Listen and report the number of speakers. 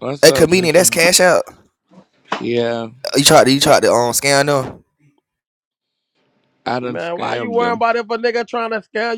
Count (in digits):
3